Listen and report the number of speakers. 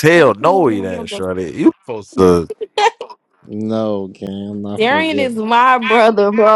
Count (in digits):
3